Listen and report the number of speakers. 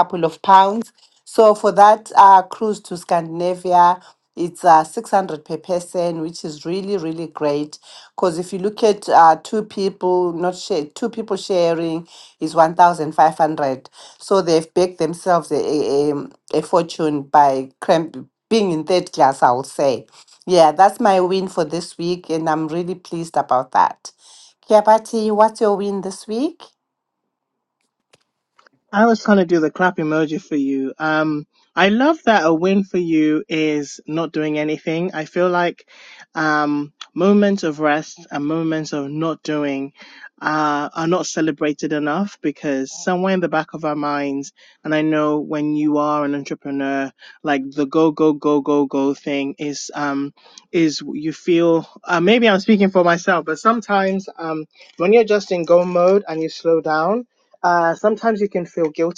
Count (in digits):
2